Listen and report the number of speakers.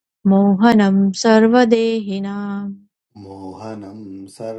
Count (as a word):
two